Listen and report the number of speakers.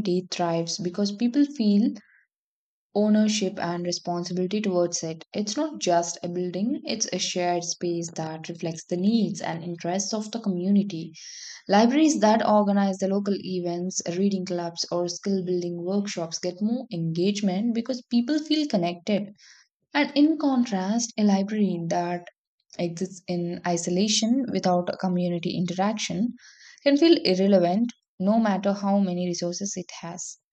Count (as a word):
one